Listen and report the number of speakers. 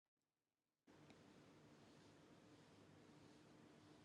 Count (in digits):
0